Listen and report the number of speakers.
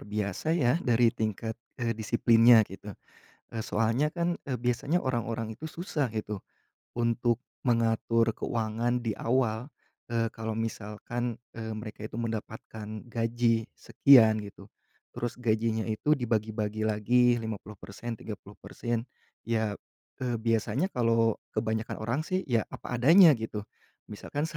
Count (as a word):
one